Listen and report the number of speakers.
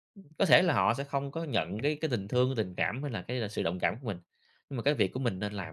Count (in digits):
1